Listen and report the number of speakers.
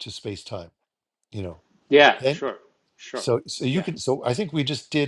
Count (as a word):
two